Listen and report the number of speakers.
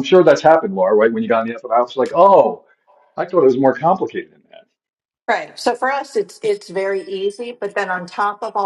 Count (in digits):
2